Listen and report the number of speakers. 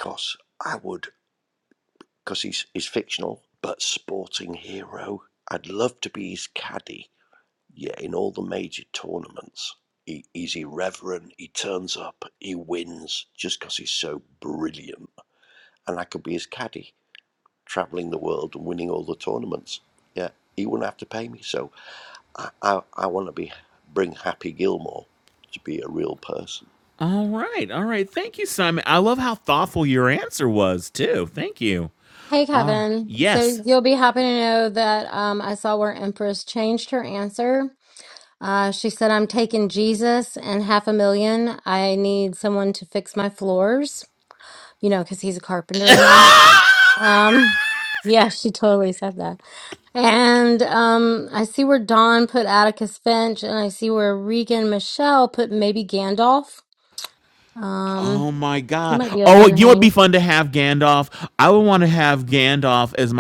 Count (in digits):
3